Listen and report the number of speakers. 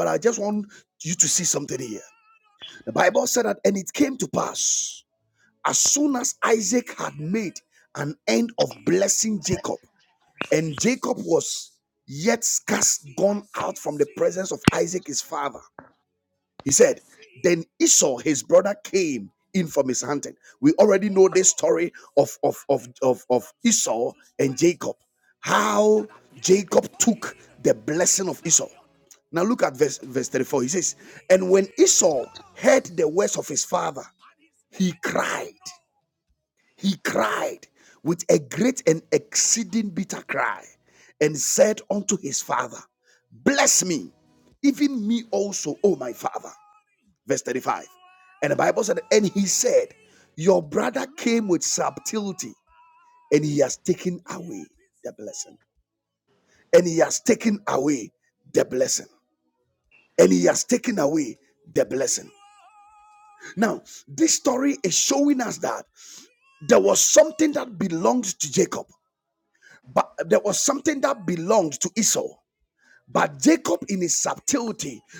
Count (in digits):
1